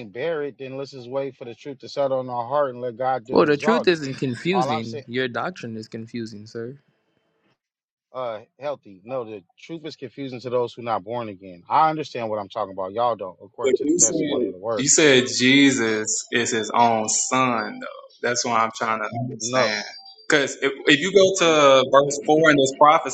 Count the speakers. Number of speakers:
three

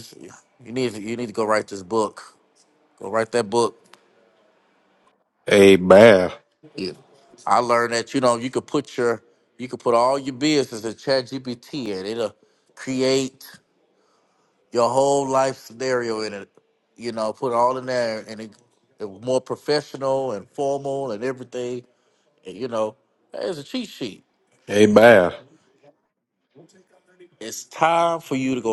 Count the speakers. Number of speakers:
two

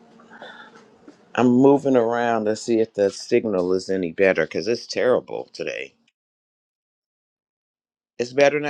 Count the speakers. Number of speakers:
one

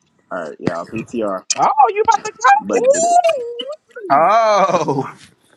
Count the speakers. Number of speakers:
three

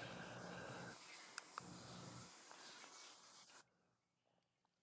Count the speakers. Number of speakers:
zero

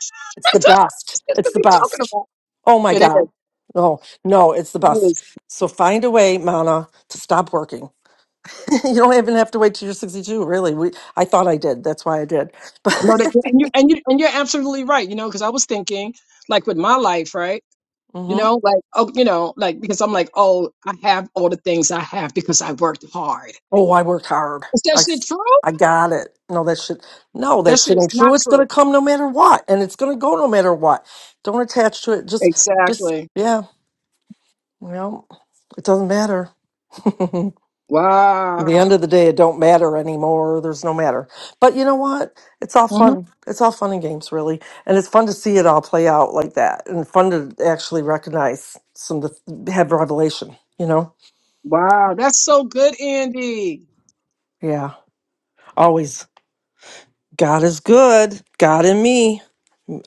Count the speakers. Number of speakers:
two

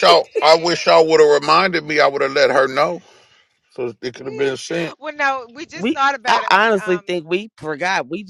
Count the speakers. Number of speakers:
three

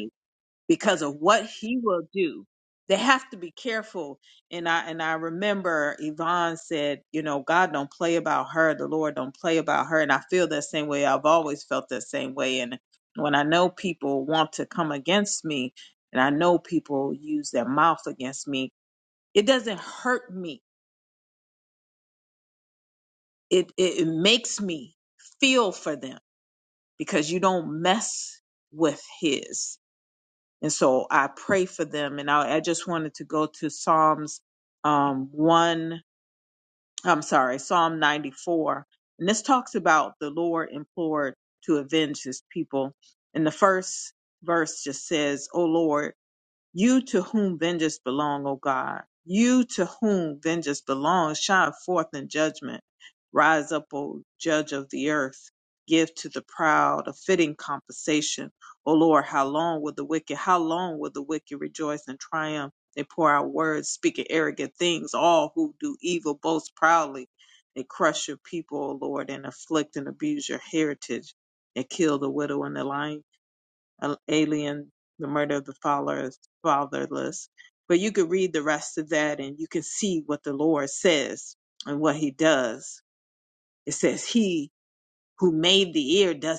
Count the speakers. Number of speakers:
one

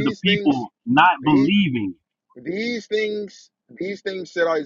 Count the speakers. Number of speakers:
two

